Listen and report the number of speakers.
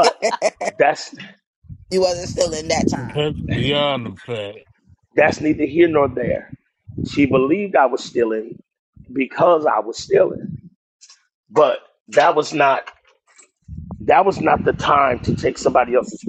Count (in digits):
3